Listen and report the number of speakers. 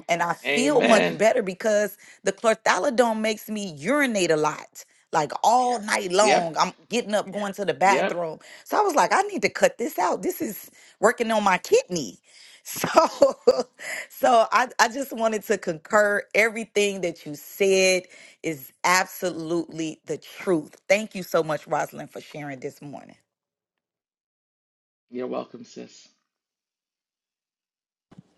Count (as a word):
two